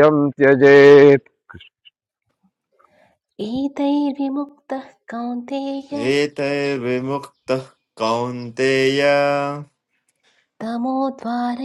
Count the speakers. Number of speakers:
three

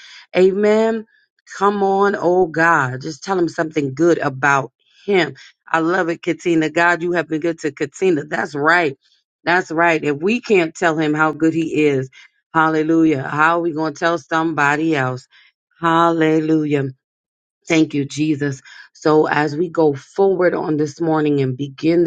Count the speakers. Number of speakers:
one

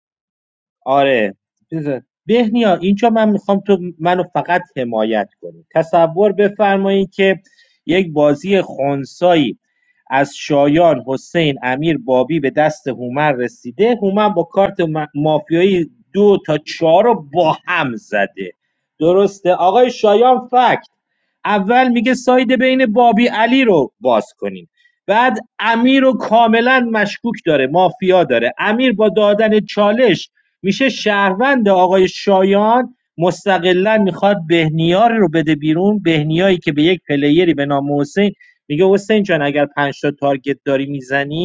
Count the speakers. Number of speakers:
one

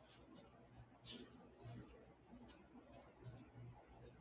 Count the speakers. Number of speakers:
zero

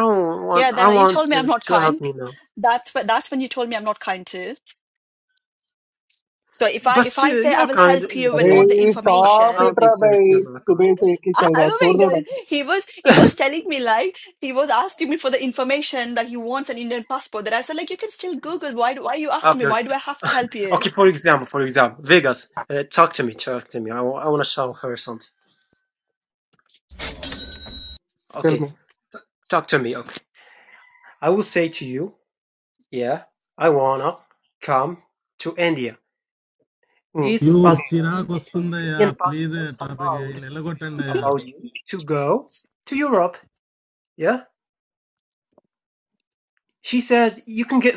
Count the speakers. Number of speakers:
four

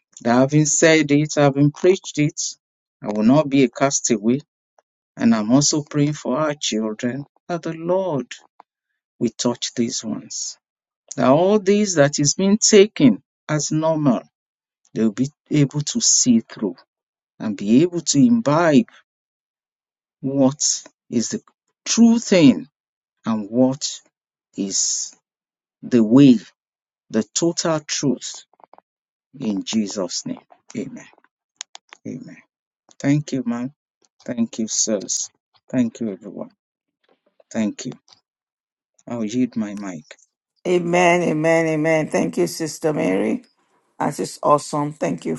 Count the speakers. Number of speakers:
two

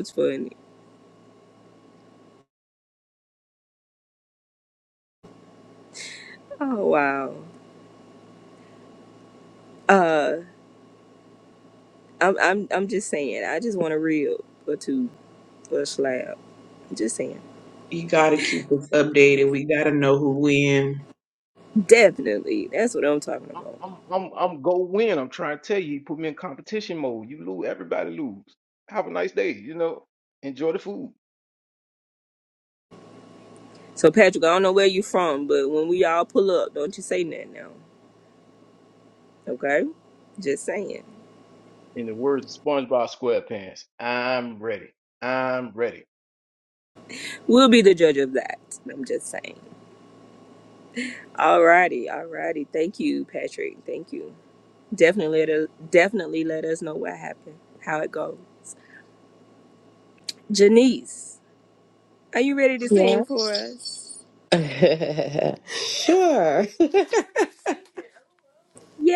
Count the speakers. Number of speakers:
four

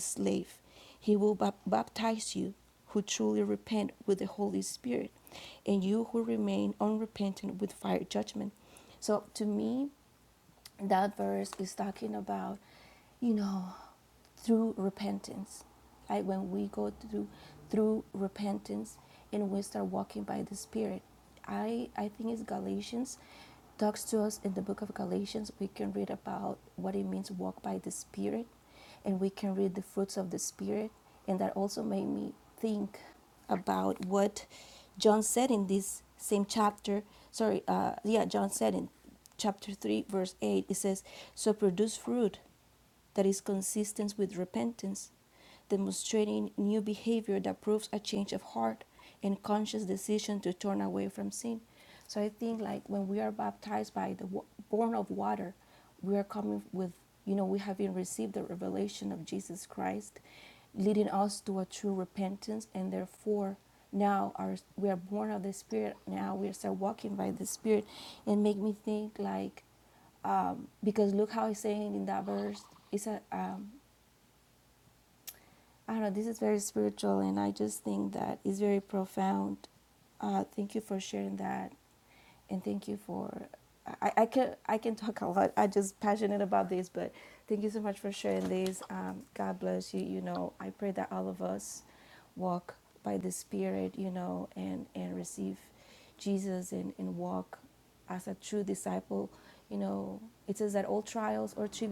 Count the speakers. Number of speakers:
one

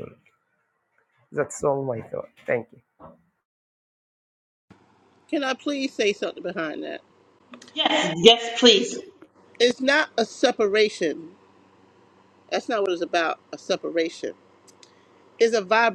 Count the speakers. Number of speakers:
three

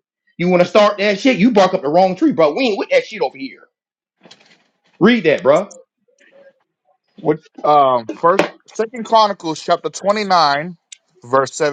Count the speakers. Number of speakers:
two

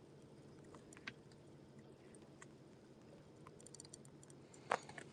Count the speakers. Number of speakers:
zero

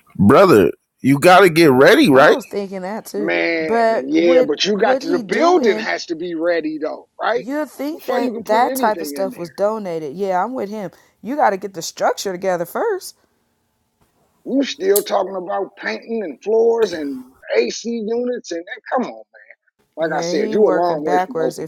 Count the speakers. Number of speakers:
three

